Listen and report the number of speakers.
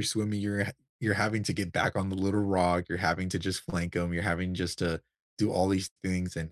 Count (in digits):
1